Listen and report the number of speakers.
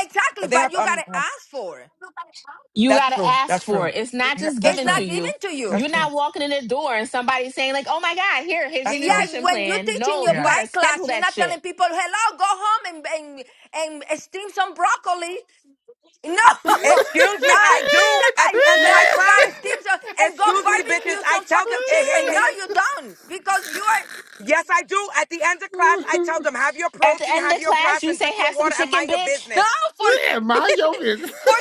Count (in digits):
4